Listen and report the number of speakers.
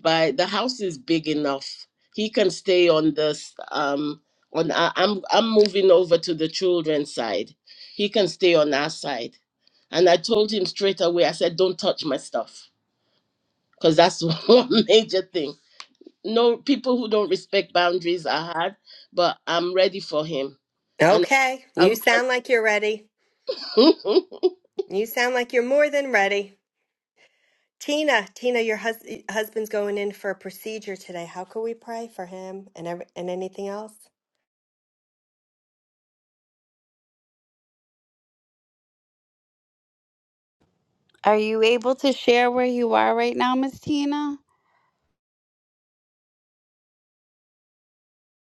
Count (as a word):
three